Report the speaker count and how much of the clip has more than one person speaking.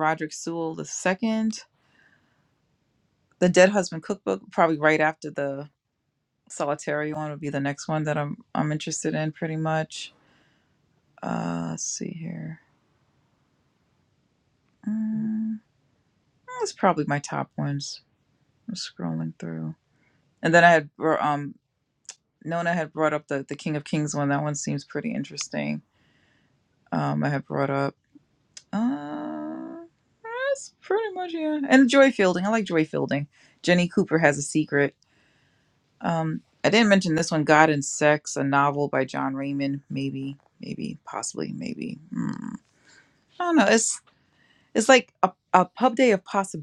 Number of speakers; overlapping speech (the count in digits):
1, no overlap